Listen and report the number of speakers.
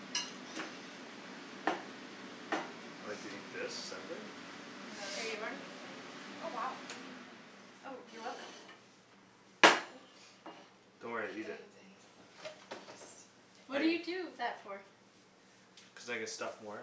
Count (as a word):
three